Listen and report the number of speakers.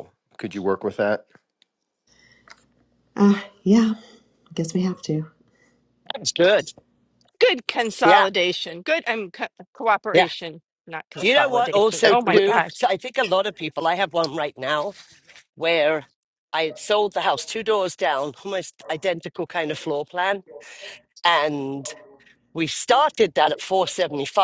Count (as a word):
four